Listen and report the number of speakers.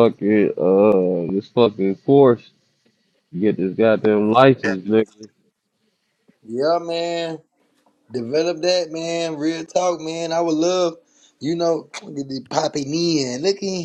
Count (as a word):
two